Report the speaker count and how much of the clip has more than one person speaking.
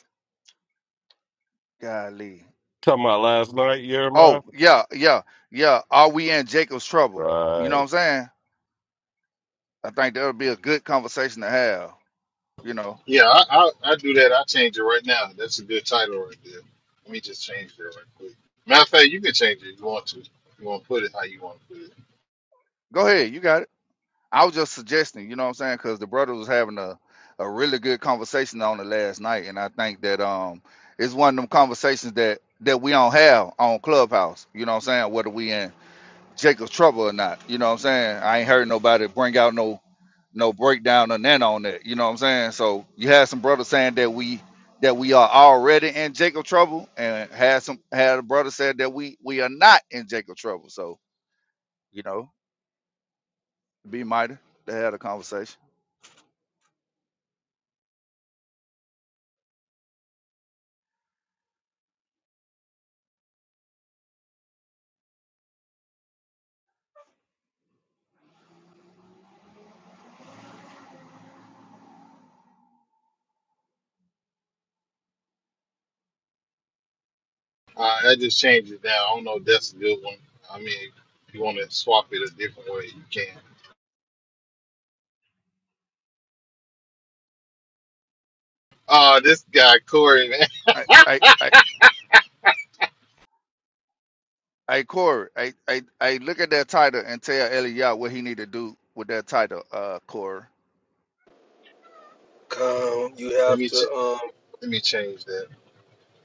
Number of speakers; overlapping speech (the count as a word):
four, about 1%